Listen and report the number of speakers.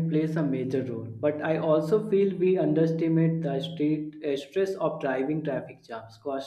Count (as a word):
one